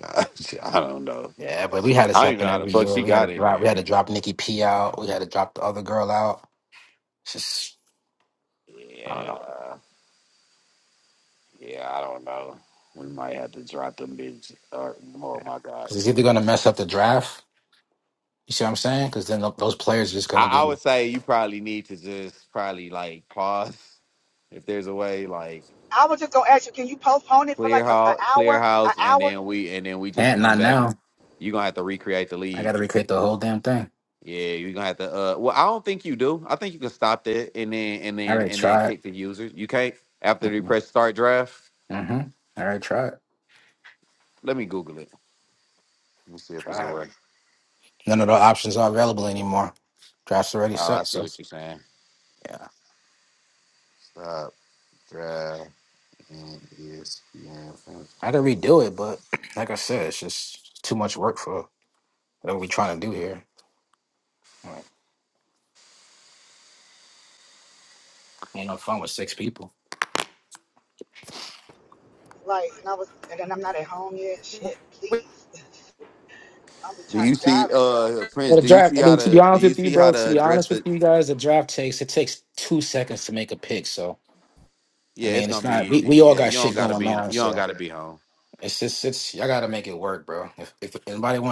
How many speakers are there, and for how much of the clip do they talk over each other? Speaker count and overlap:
3, about 15%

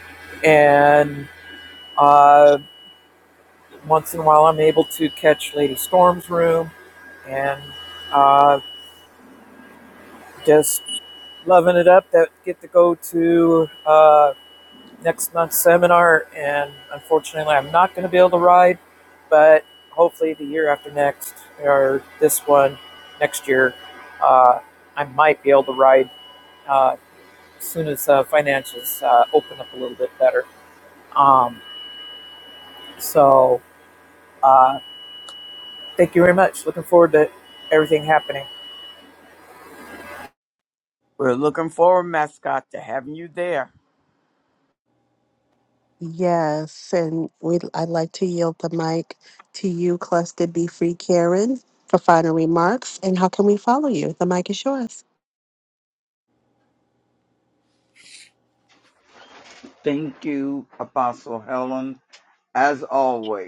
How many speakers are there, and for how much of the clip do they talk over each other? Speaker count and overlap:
4, no overlap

